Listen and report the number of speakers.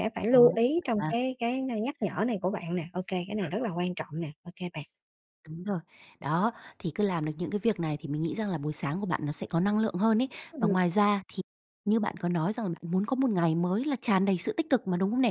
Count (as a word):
two